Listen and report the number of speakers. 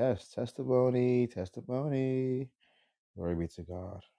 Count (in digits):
1